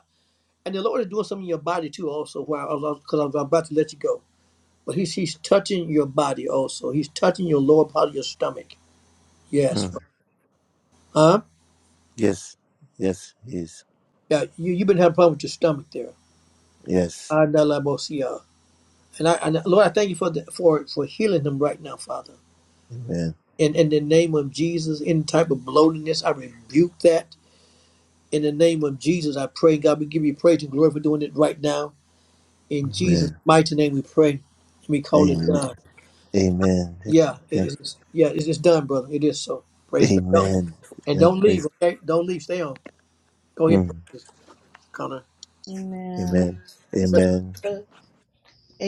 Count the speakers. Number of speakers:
three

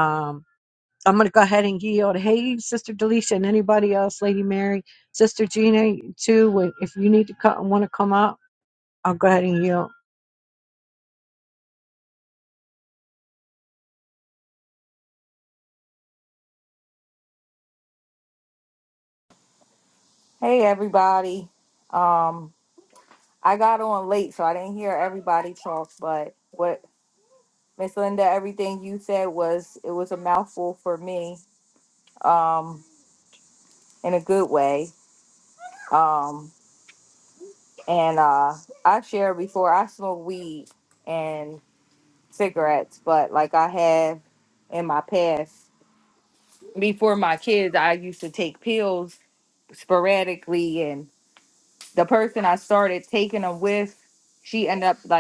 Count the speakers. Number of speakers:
two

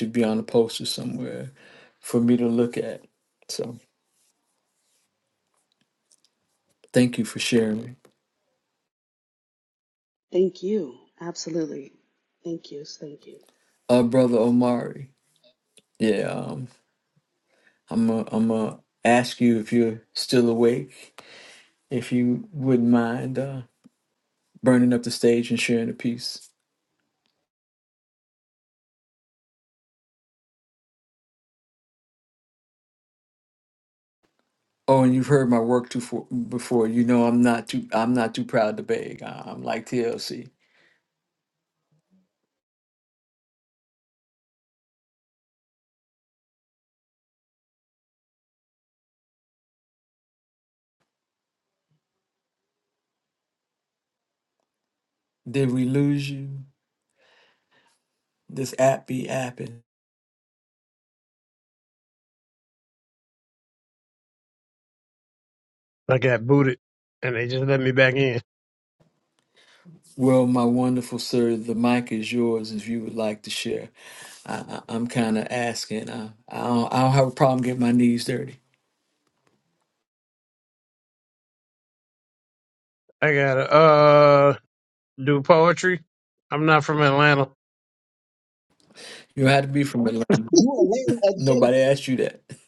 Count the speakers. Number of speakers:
four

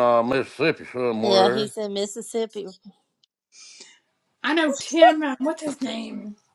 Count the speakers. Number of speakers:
three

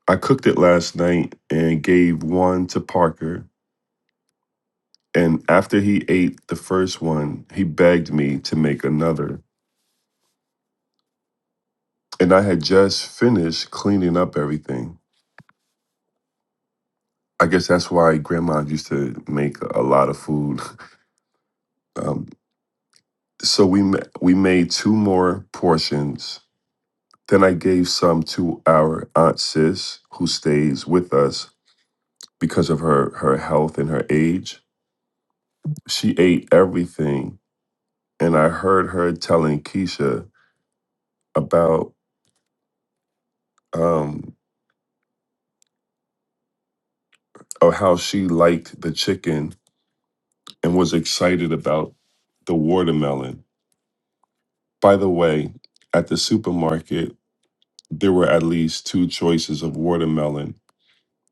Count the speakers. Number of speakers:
one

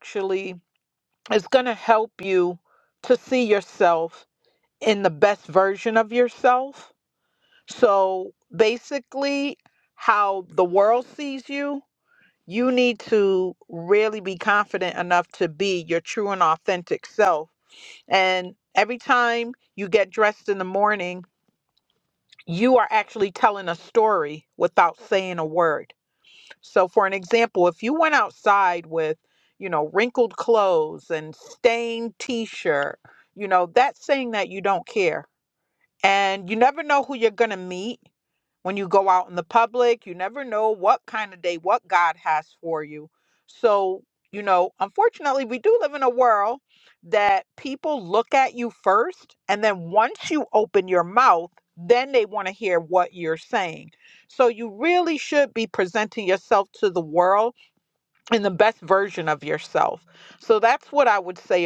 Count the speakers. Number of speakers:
one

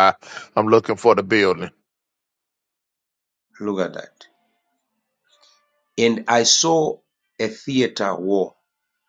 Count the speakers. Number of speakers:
two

